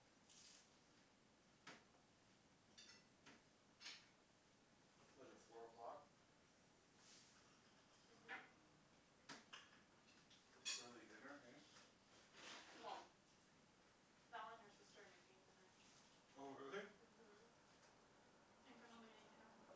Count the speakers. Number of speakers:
3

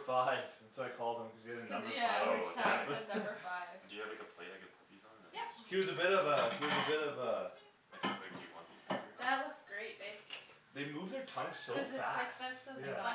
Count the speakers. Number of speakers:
4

